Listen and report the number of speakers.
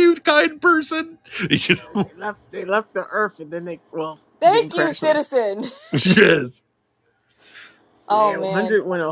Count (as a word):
three